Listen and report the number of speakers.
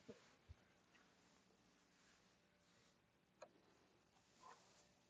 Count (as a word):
zero